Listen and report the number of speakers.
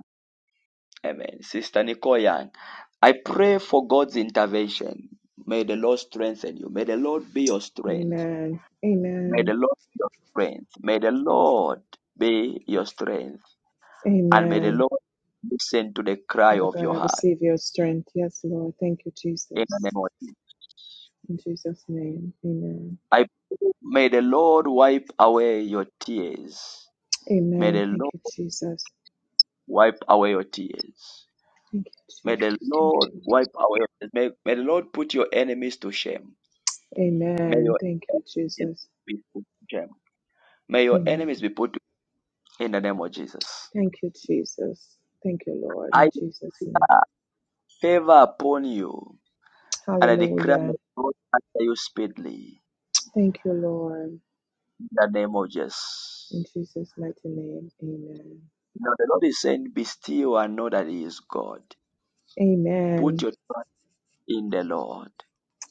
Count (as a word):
two